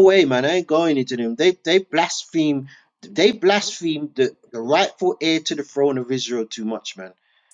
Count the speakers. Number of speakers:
one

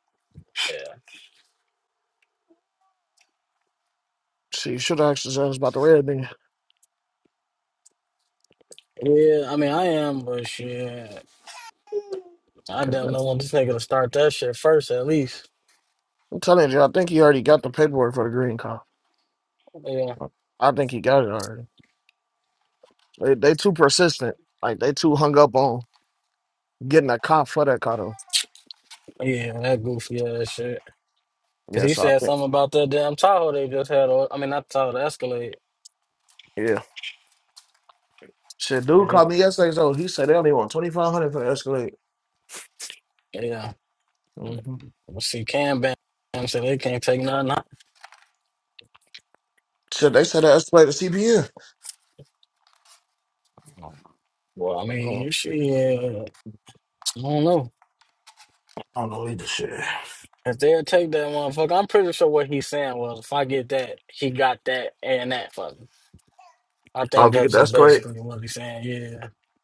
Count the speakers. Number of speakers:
two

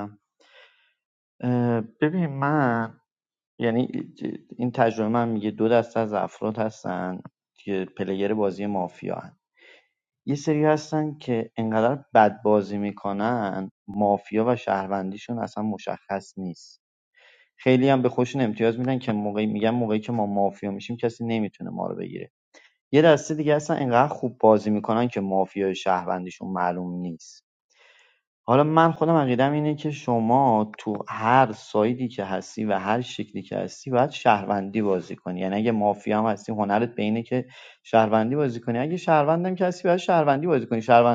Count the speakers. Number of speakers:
one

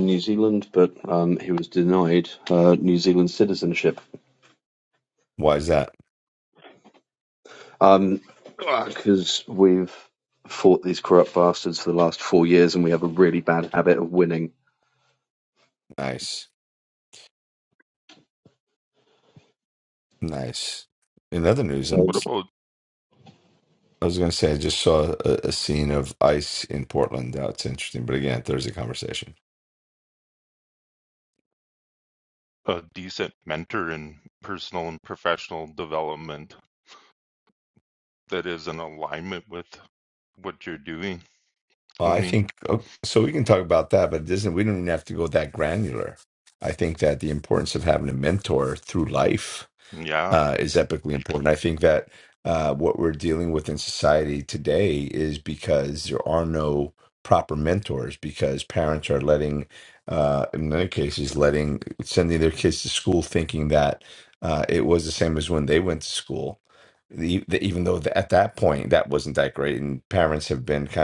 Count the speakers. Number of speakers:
three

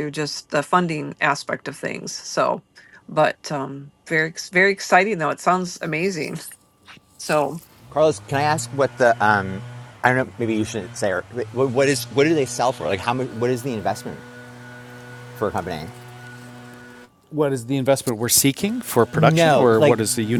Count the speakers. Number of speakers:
three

